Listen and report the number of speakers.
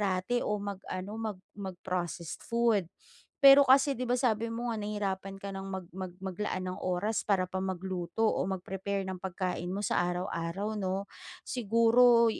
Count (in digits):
1